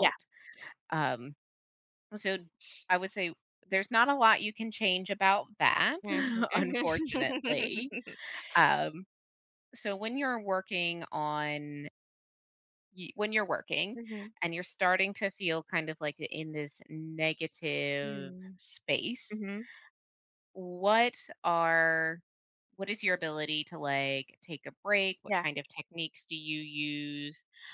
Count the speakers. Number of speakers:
2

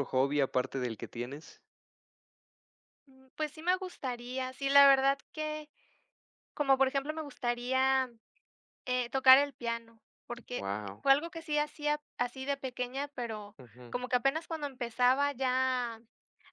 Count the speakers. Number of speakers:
2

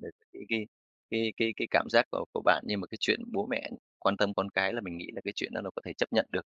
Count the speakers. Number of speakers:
1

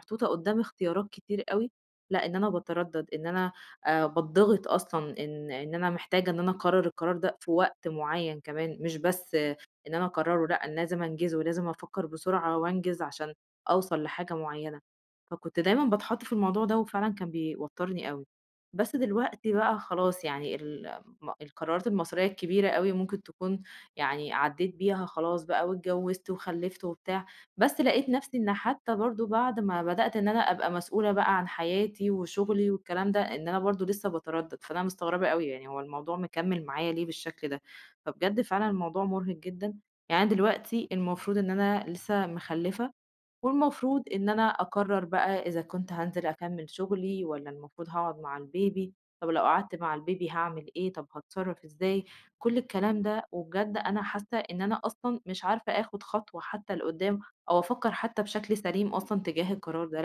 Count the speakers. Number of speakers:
1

